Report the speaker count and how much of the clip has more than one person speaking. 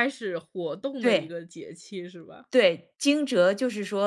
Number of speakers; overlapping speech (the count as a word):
two, about 6%